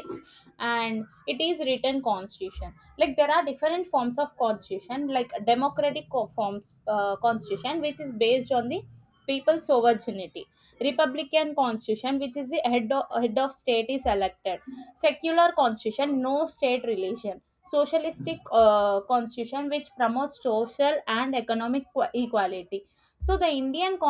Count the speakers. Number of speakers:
1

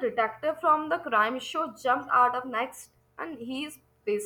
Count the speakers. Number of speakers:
1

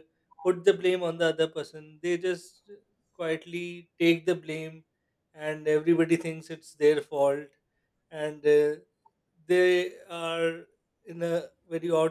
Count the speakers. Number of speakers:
1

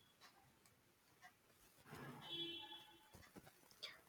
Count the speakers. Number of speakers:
0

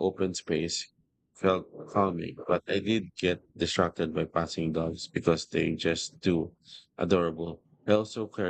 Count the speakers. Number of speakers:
1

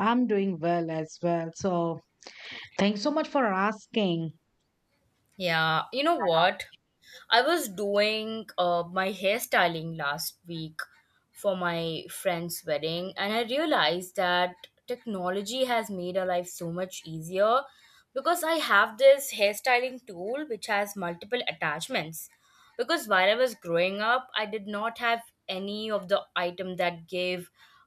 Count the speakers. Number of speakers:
2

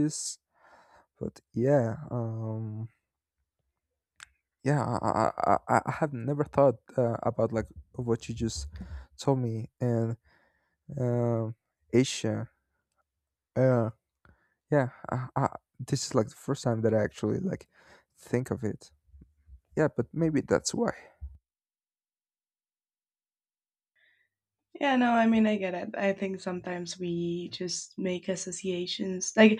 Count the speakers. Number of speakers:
2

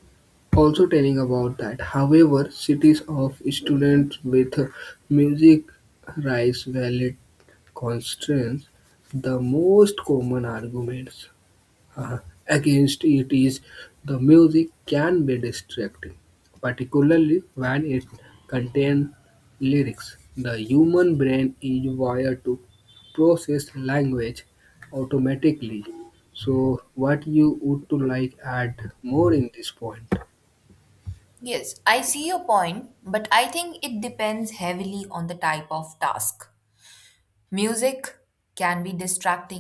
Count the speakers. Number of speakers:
2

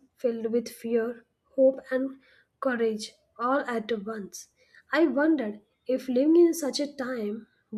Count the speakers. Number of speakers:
1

